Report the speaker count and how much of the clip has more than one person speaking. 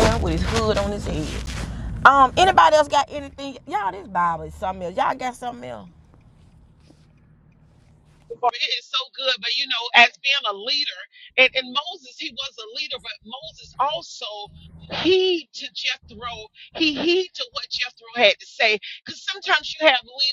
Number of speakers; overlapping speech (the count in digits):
2, no overlap